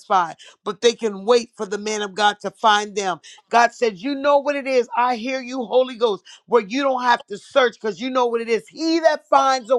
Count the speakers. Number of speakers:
1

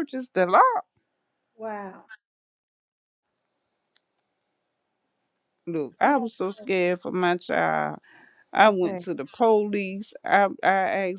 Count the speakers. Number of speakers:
2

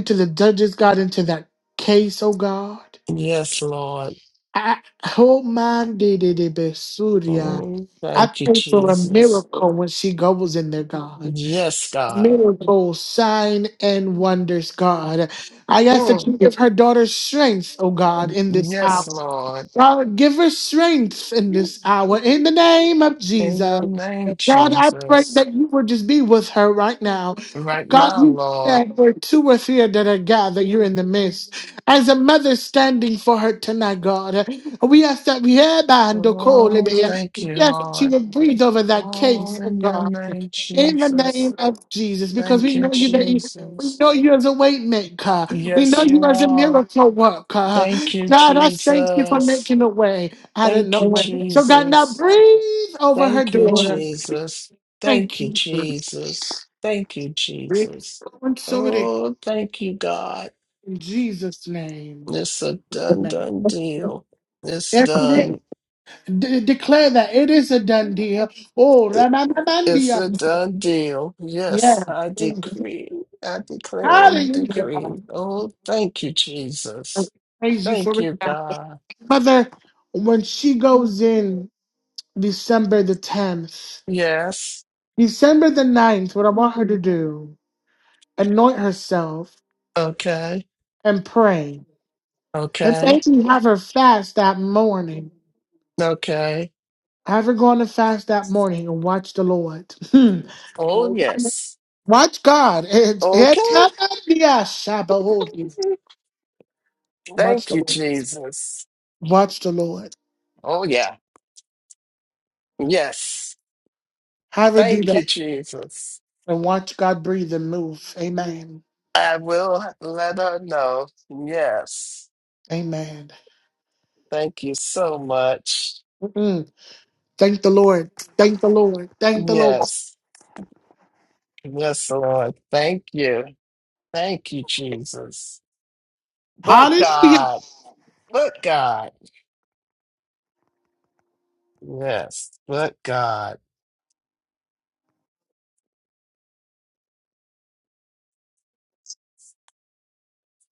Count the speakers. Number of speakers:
2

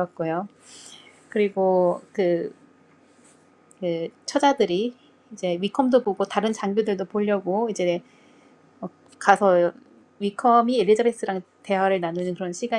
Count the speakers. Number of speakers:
1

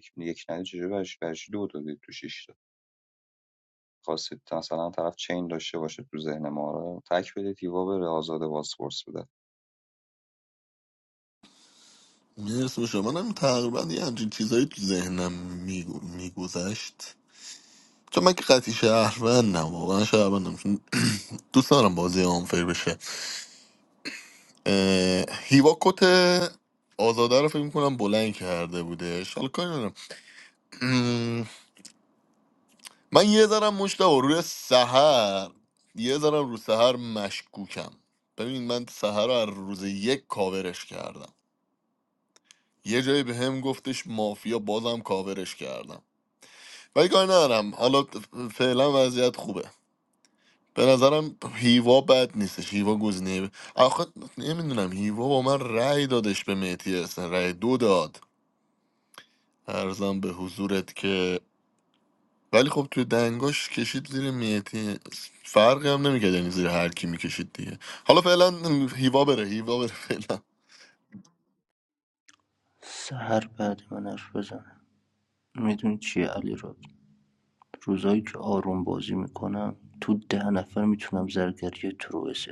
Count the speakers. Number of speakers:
3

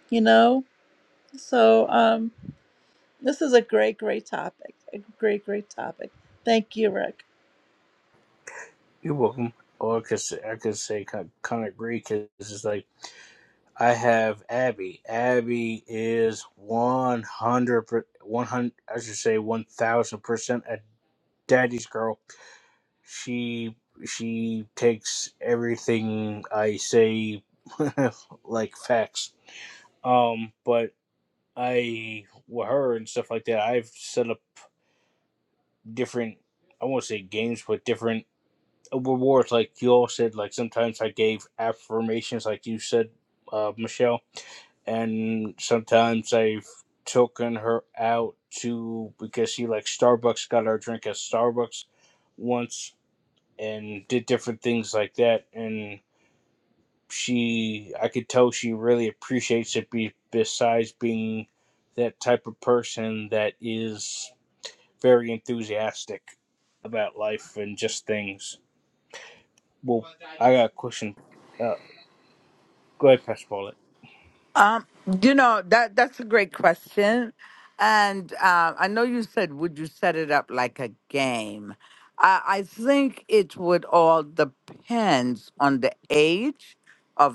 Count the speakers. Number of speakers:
3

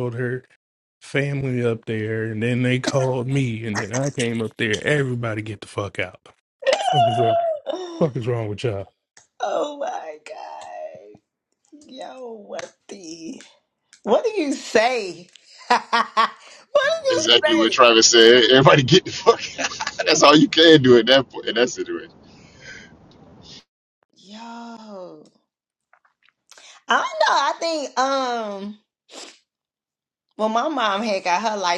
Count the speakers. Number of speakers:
3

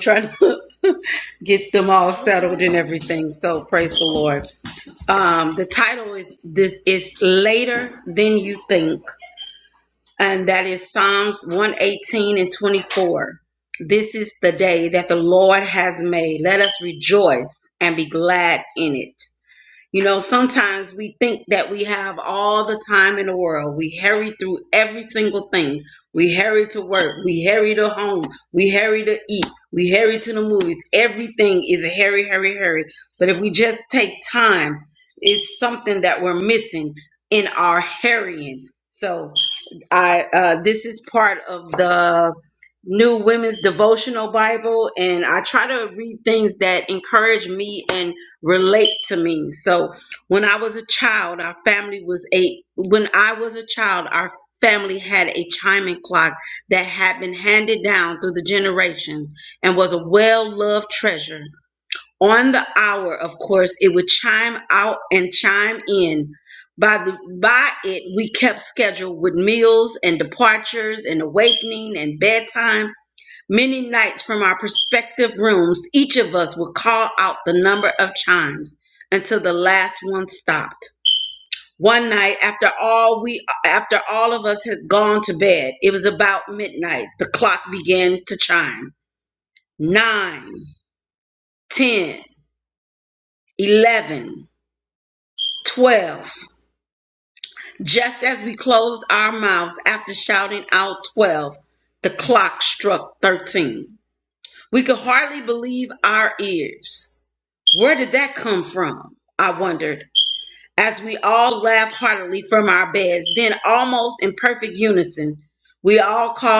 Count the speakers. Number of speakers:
1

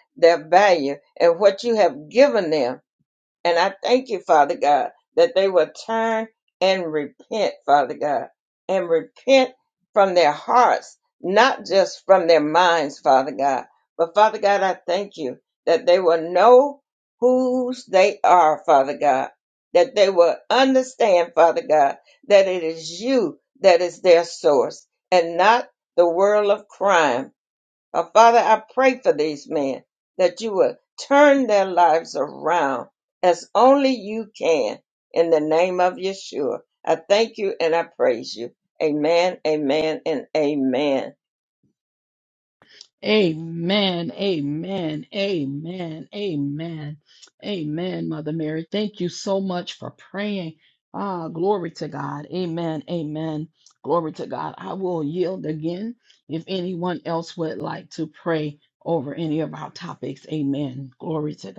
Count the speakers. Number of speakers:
2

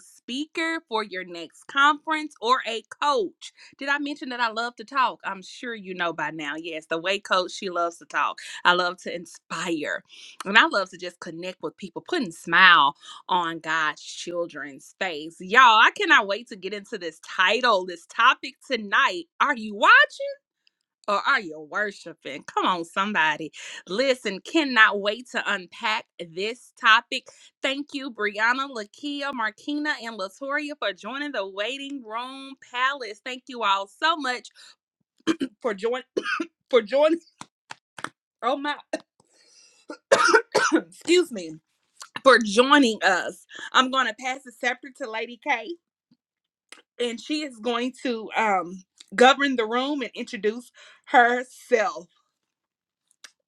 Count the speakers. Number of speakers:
1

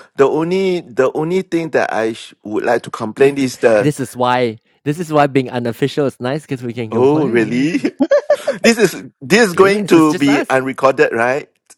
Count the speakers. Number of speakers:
2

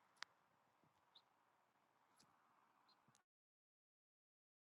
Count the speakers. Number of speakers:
0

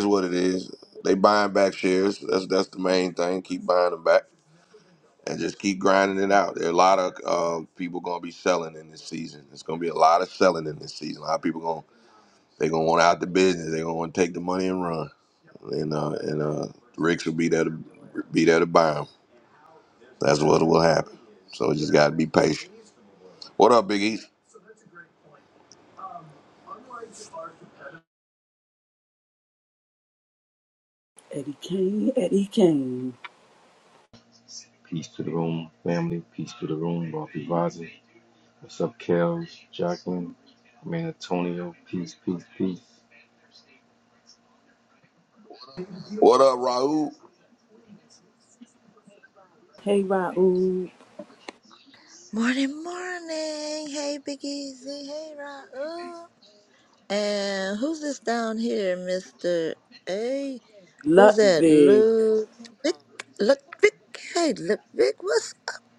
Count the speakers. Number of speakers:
4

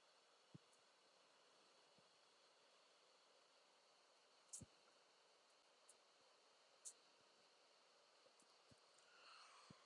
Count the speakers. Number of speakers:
0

